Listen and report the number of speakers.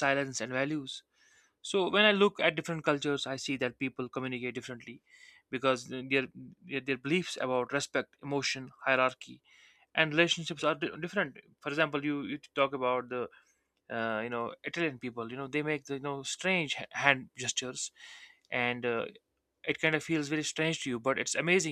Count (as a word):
one